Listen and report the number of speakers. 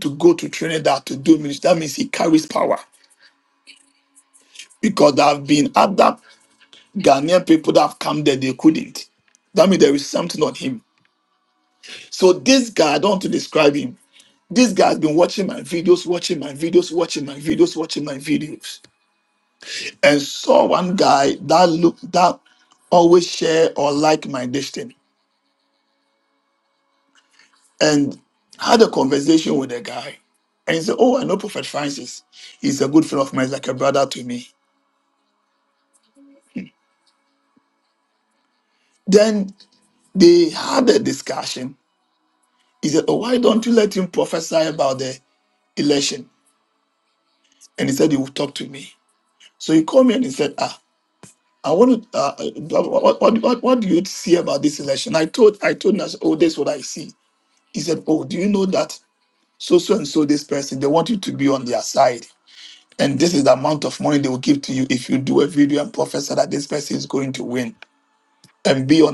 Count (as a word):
one